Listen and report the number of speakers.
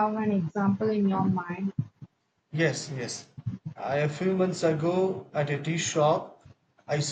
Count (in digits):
2